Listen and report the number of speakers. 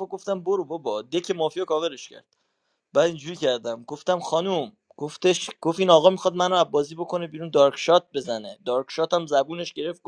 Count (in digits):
1